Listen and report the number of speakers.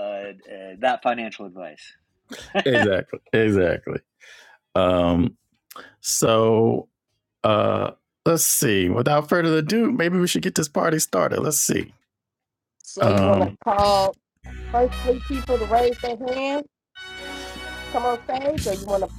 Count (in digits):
3